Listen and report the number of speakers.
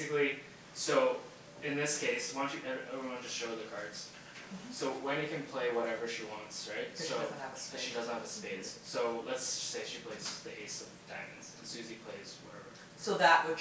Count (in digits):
2